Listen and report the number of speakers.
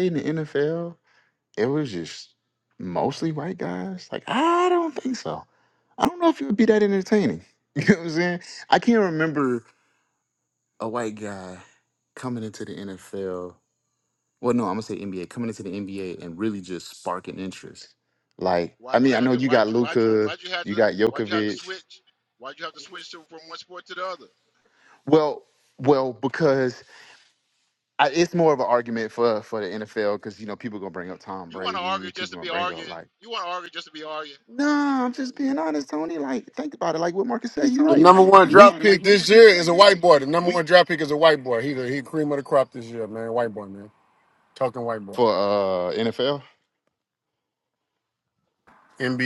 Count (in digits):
3